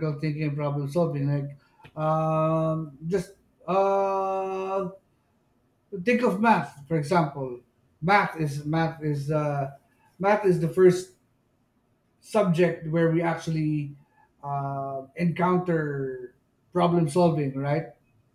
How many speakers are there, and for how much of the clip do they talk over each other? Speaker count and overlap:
one, no overlap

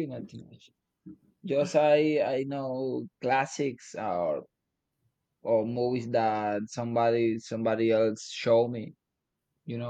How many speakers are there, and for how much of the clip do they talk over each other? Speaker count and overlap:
one, no overlap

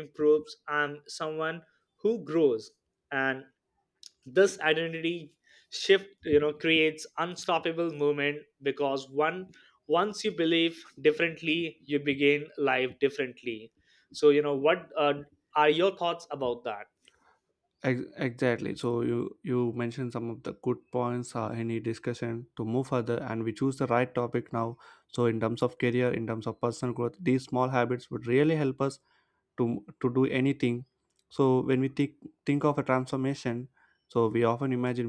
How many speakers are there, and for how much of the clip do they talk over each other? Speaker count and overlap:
two, no overlap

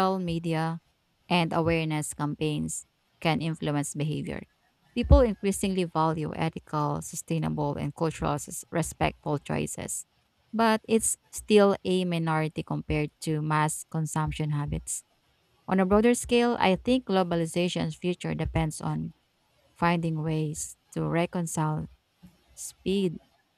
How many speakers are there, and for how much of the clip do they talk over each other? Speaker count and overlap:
one, no overlap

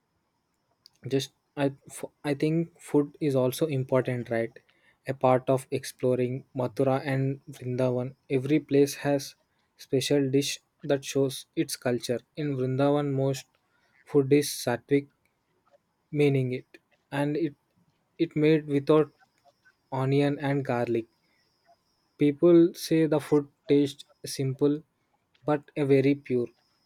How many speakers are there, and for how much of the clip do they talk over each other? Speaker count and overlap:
one, no overlap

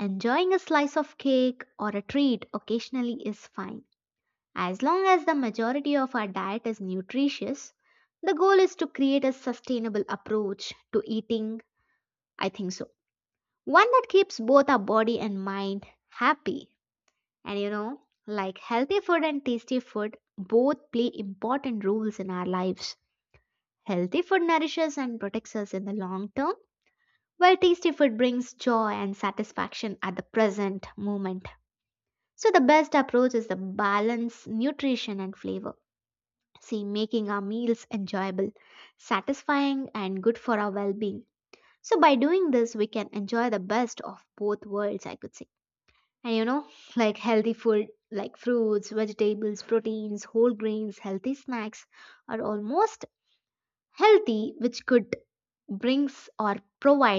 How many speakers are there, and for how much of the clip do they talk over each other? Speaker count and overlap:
one, no overlap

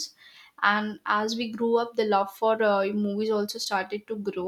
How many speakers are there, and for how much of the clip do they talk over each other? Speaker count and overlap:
one, no overlap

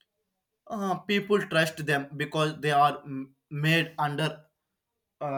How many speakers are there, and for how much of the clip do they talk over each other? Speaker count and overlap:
one, no overlap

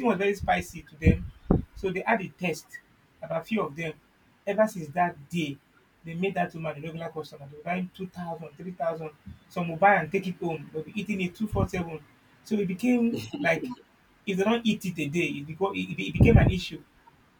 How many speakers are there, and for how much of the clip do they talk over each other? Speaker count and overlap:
one, no overlap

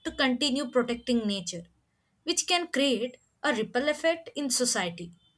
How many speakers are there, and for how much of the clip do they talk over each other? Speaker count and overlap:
one, no overlap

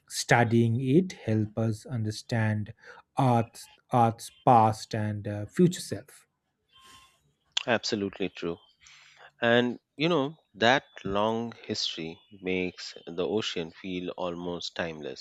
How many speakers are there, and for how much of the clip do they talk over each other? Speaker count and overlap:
two, no overlap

